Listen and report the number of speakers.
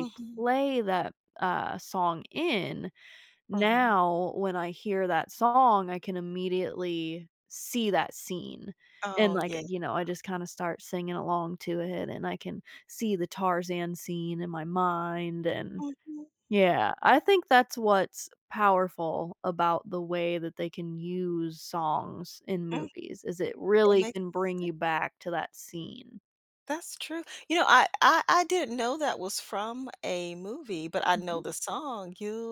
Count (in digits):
2